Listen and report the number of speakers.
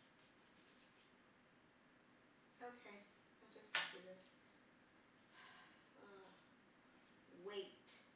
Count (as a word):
one